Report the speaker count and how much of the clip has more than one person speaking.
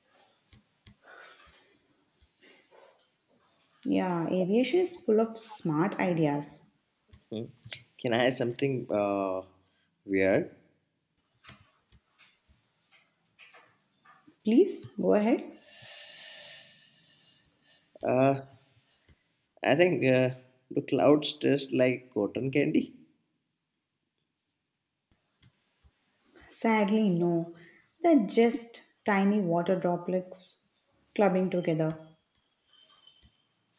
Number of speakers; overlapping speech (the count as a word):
two, no overlap